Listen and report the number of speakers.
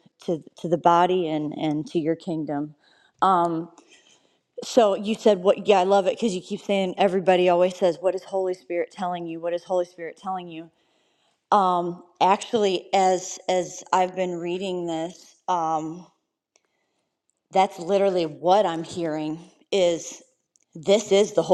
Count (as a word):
one